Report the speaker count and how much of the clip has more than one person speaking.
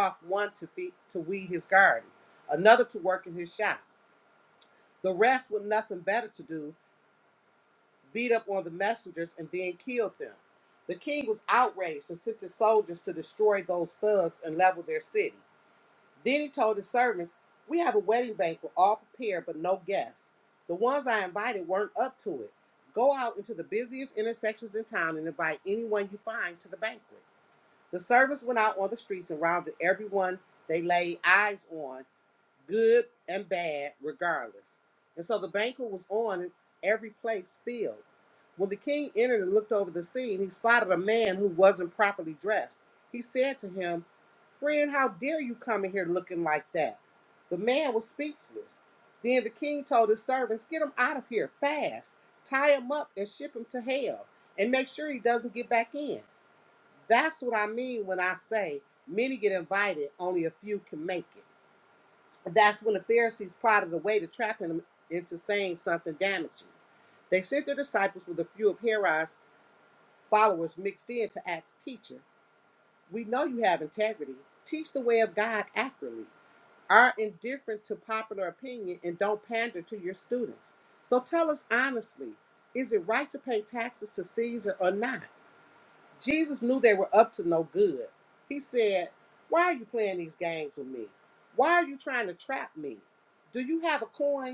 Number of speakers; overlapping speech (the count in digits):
1, no overlap